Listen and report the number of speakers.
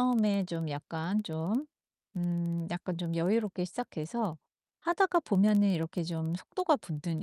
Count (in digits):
1